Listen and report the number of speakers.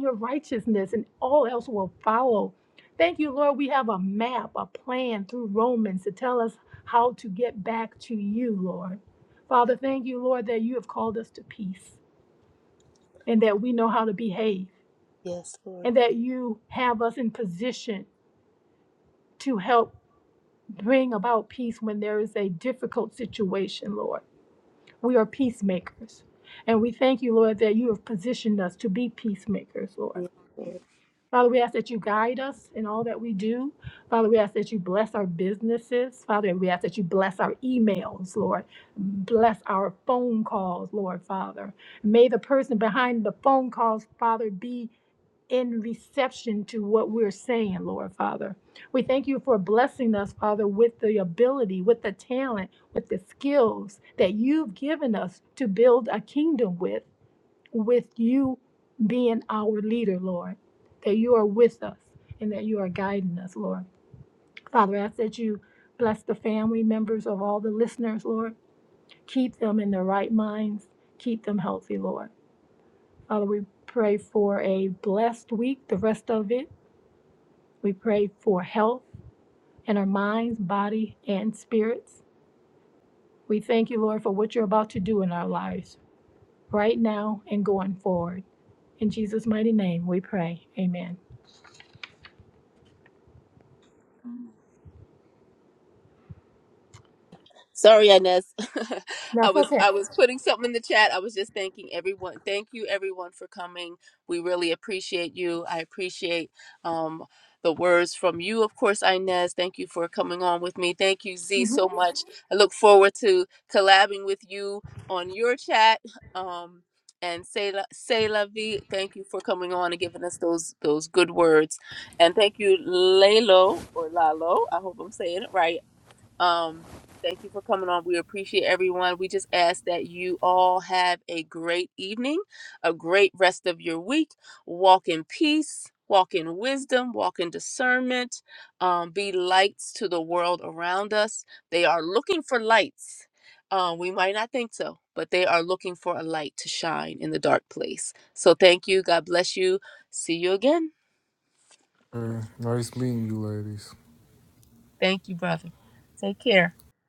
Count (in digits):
3